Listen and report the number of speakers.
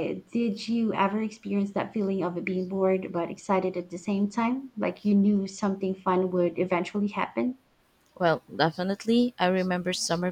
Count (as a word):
two